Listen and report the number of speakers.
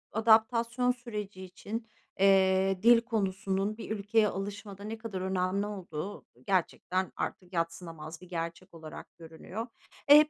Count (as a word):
one